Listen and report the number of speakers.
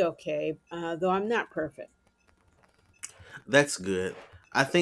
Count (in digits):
2